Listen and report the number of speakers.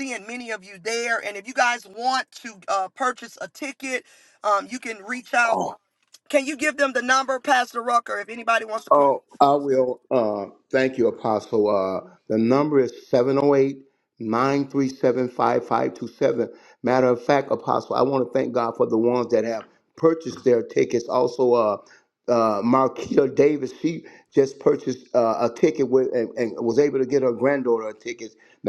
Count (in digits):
2